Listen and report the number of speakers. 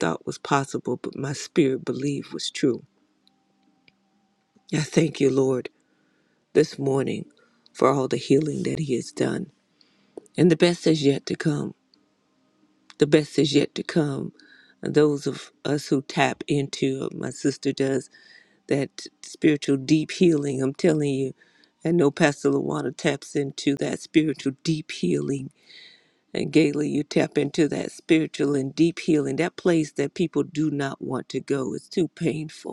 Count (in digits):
1